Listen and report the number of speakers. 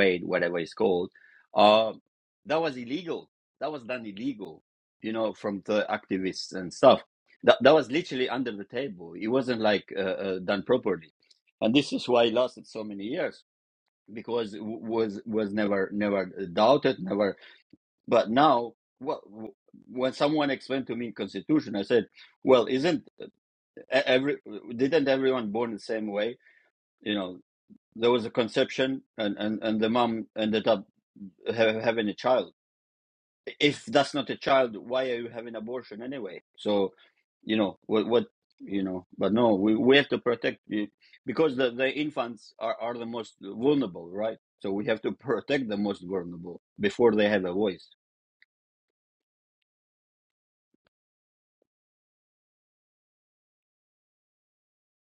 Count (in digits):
1